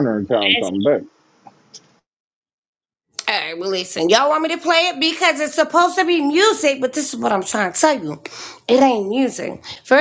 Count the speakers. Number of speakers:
two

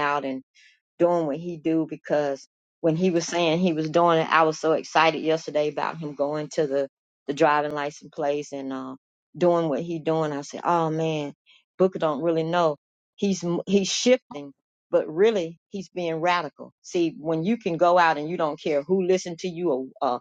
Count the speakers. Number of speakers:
one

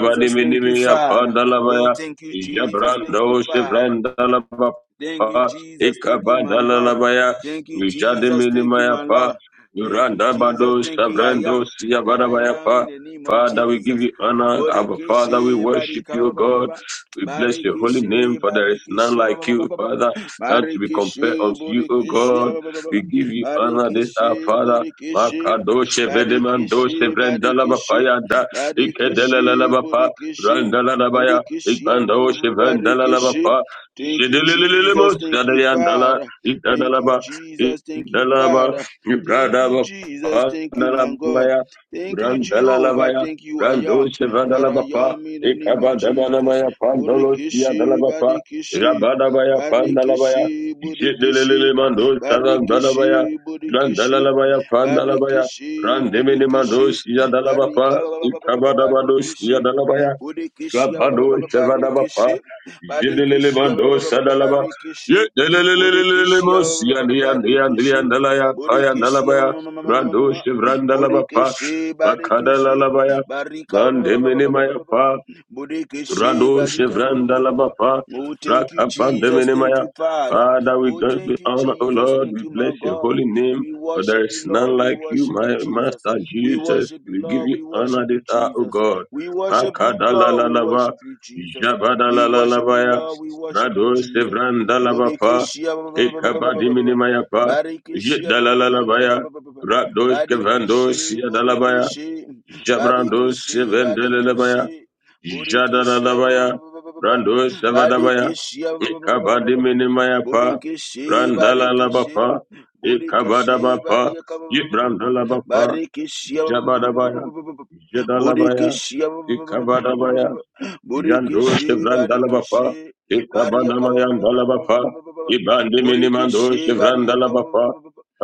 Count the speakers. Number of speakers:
two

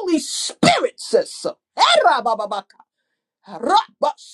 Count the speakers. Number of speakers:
one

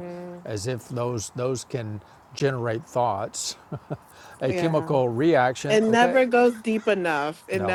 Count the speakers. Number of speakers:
two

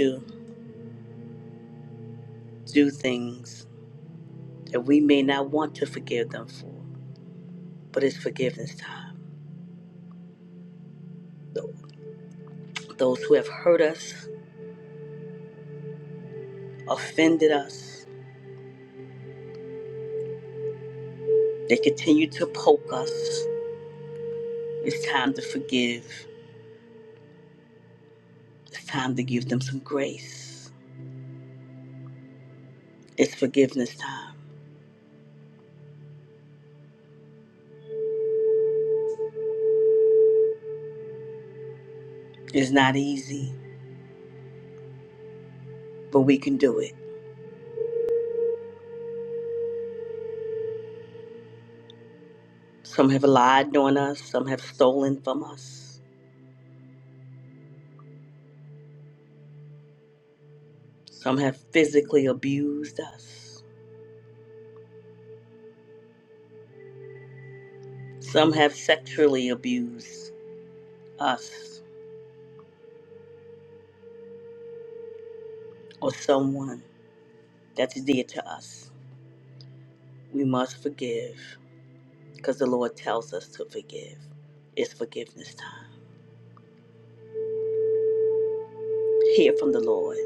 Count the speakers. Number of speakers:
one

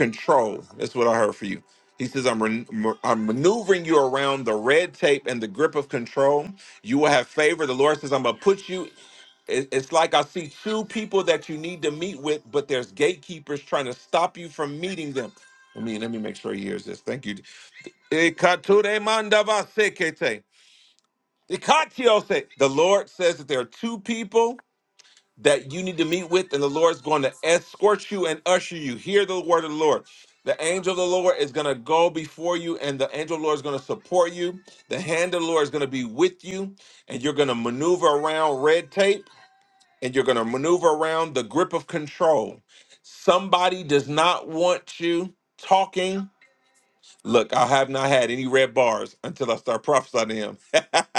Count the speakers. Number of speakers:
one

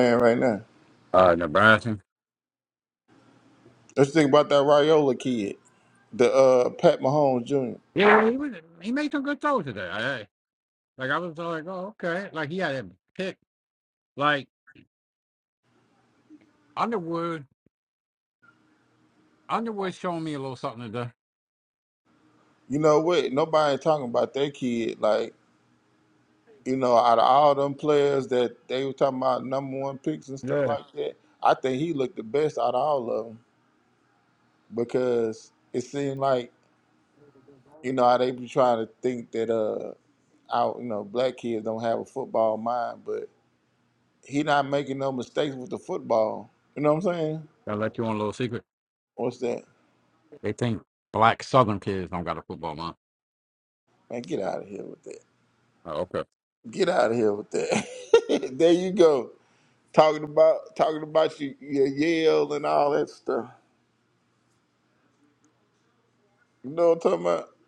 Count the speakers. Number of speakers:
two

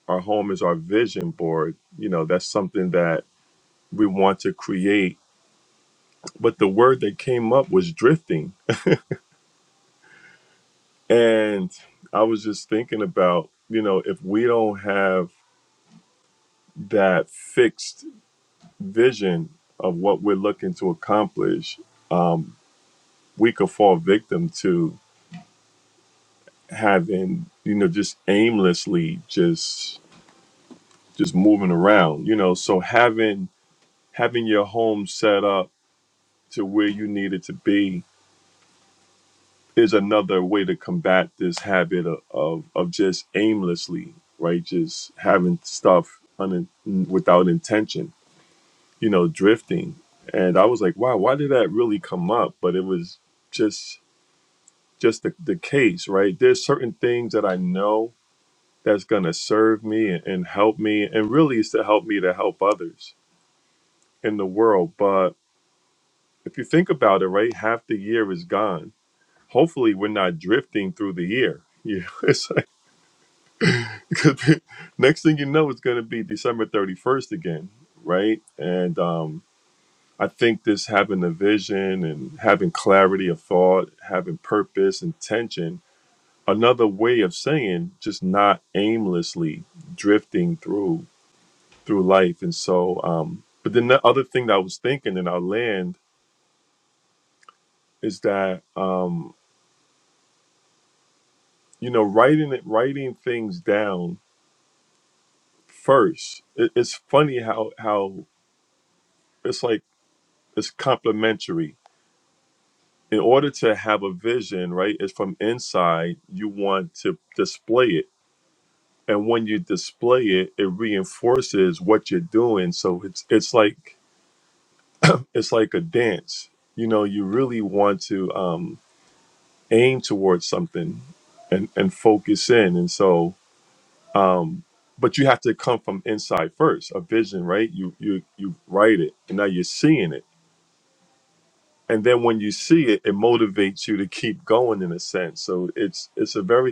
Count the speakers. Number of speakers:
one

